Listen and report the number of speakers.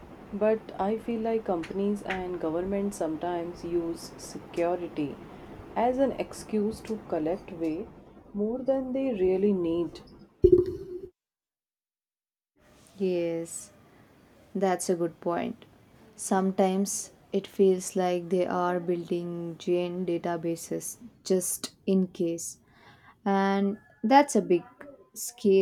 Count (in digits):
2